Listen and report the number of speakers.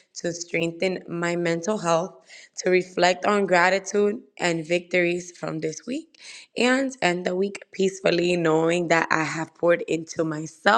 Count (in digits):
1